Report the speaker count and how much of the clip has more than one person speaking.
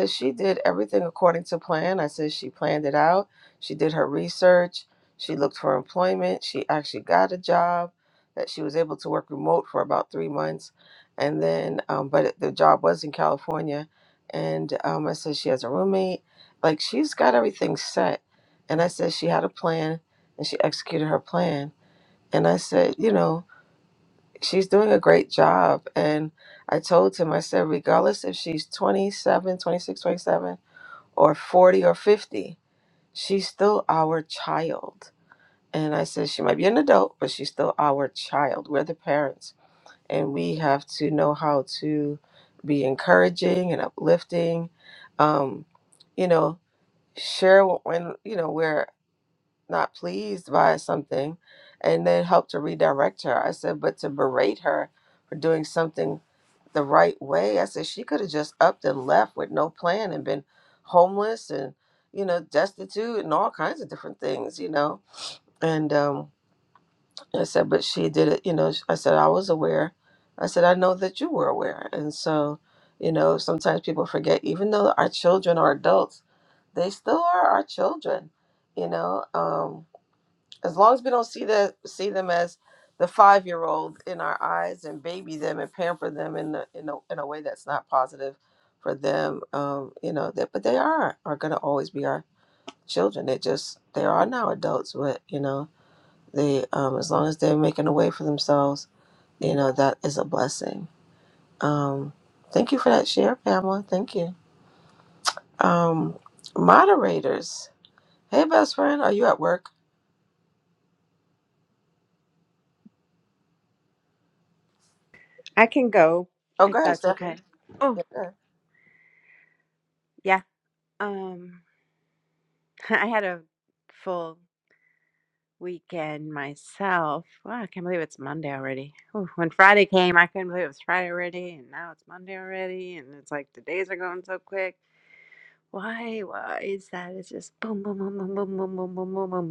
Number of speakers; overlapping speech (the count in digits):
2, about 1%